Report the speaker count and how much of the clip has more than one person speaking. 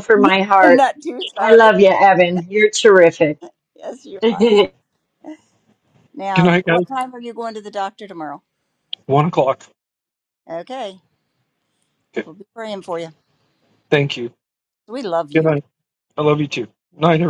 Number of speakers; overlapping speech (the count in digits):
3, about 7%